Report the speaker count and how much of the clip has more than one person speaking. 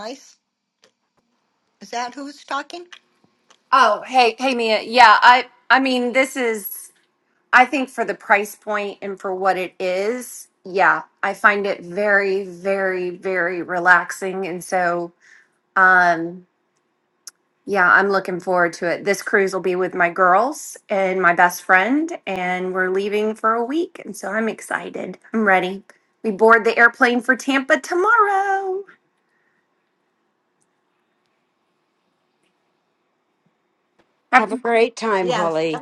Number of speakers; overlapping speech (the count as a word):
three, about 2%